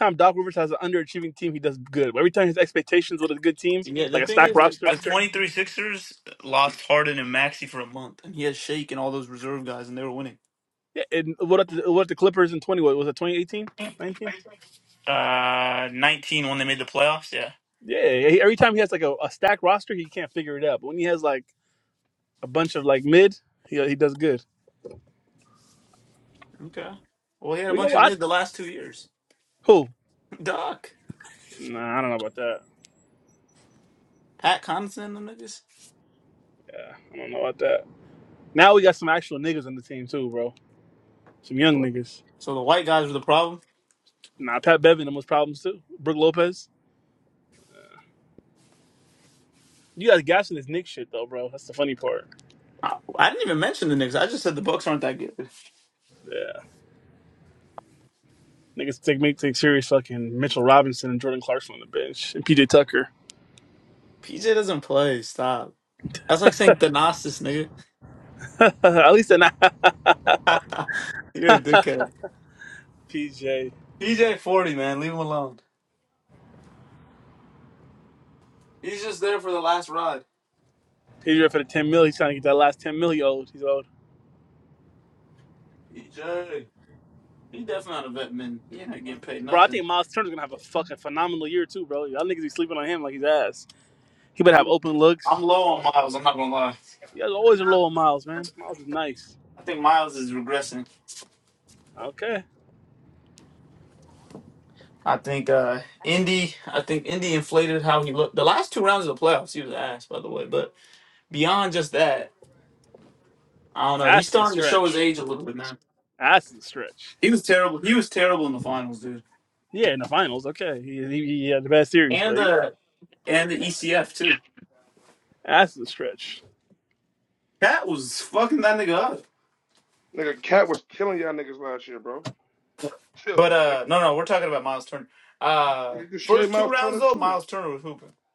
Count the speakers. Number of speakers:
three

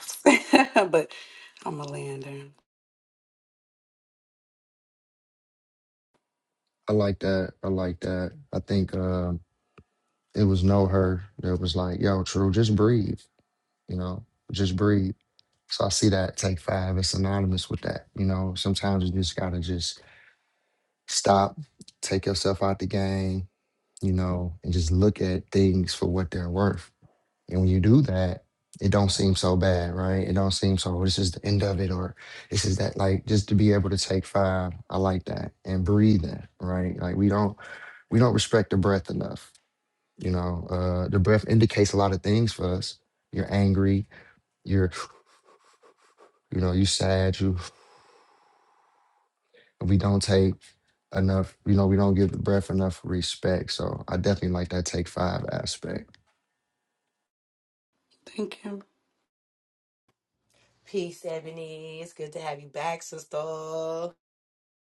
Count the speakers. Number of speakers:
three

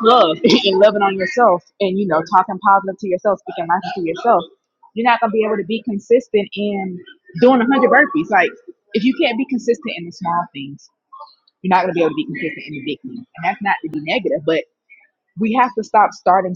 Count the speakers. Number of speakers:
one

